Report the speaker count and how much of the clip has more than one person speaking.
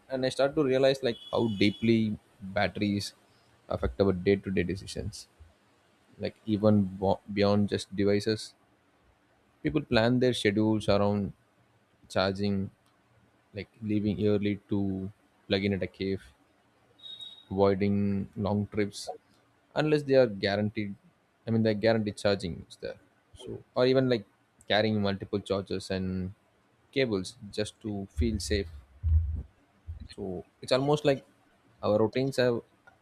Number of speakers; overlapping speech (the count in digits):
1, no overlap